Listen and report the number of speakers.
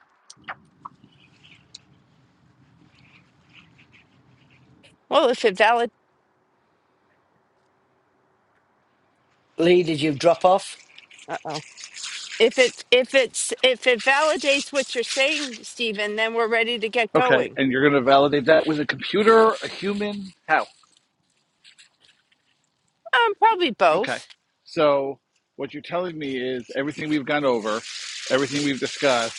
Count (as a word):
three